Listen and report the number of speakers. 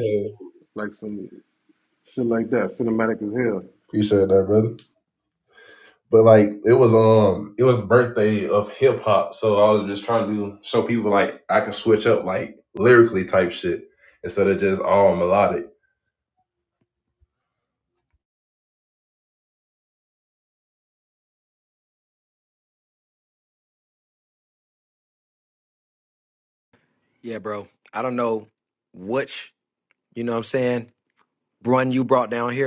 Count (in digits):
3